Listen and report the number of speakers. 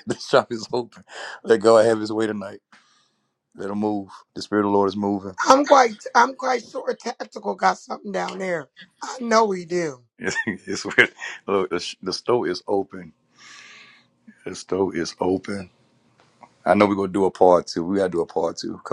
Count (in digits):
2